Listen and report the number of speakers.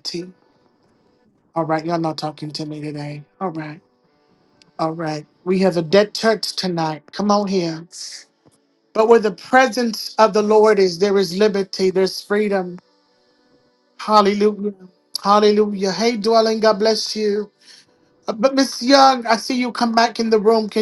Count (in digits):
1